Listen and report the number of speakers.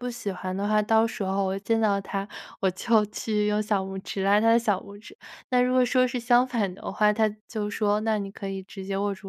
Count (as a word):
one